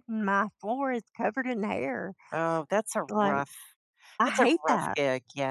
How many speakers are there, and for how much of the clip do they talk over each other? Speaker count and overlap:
2, about 20%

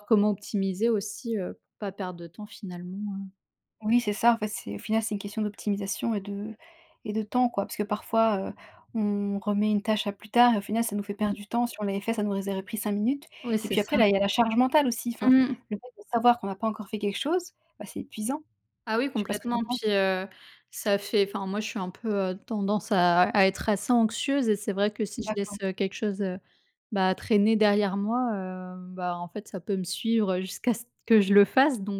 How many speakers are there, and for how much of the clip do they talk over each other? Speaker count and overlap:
2, about 6%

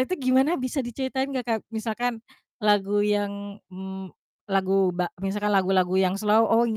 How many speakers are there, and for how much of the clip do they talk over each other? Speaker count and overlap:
1, no overlap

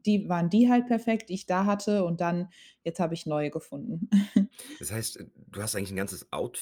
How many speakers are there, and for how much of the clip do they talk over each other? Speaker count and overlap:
2, no overlap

